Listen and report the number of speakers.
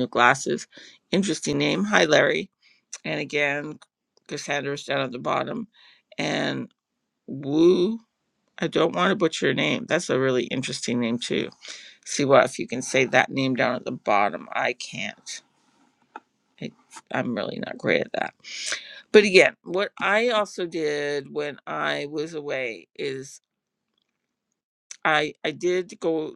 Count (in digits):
1